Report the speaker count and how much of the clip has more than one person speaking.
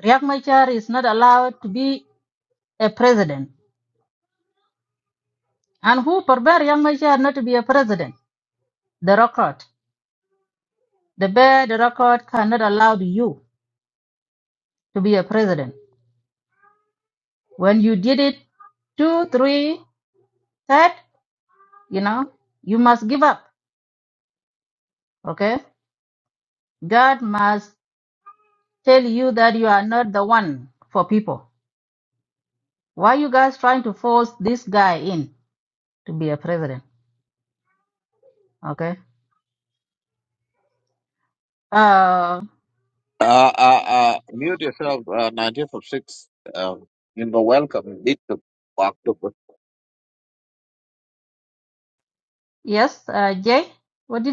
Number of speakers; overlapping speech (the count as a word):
two, no overlap